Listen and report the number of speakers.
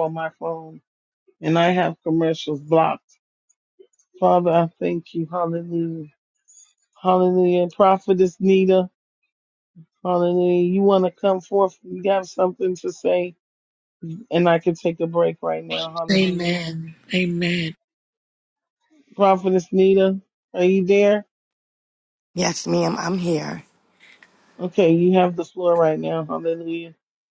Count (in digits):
3